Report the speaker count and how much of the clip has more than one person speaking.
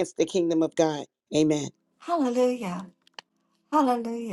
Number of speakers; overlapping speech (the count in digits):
2, no overlap